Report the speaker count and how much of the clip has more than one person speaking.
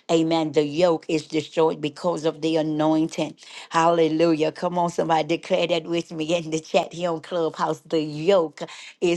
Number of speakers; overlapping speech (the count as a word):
one, no overlap